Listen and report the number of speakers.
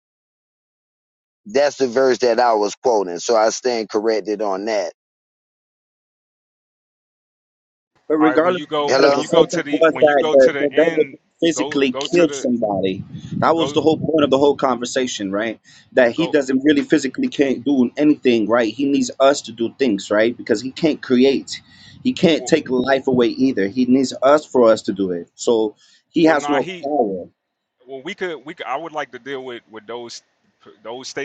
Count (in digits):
3